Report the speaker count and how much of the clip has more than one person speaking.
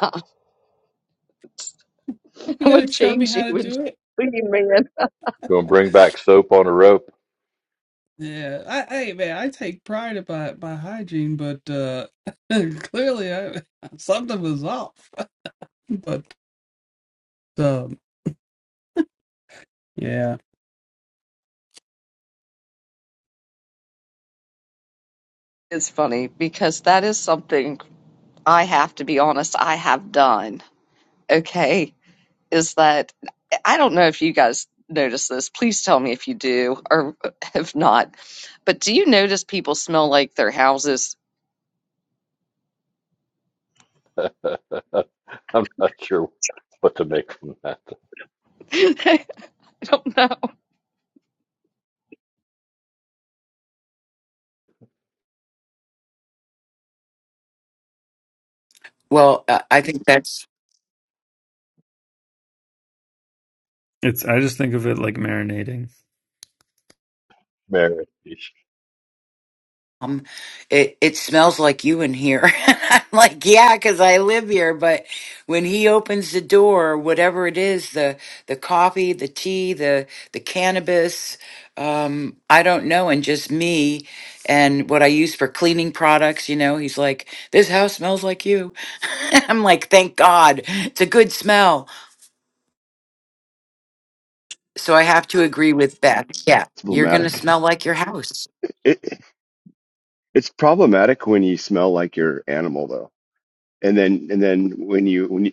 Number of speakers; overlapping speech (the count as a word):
six, about 2%